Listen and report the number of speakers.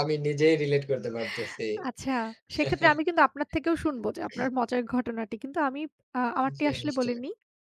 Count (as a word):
two